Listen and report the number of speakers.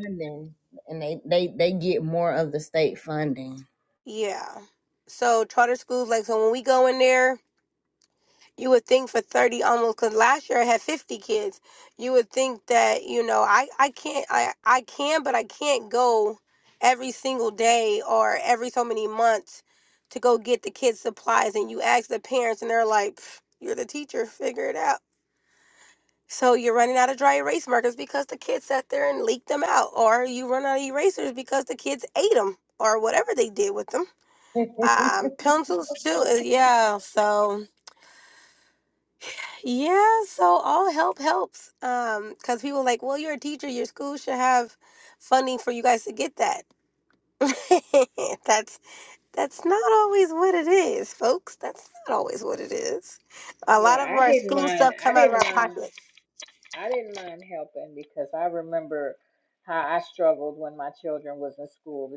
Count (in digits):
3